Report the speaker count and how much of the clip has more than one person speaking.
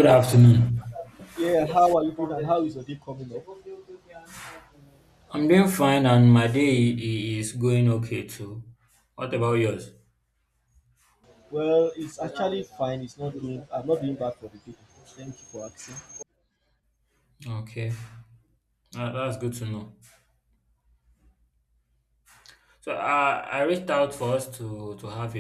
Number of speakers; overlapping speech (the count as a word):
two, no overlap